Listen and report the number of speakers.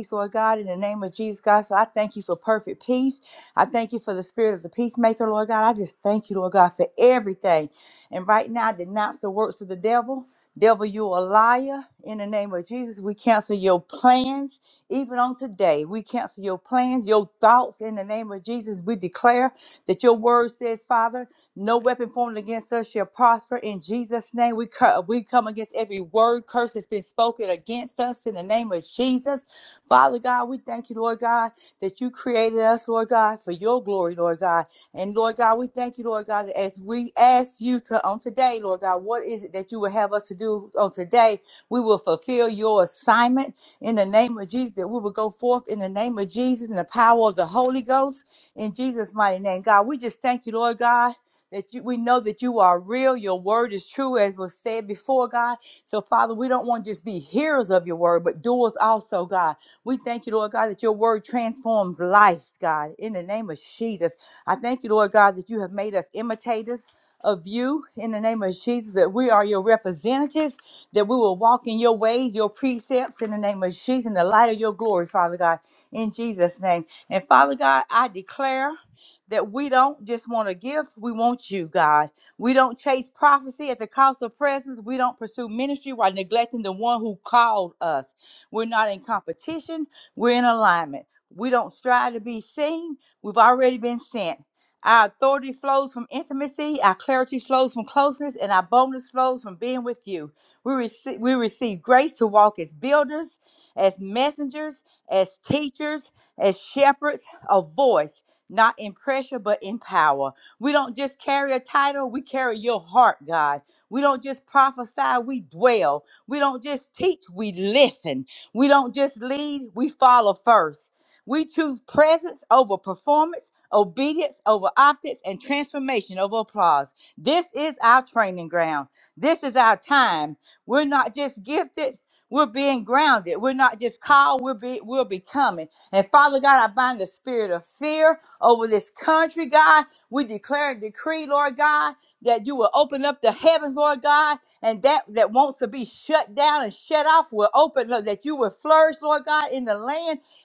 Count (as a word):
one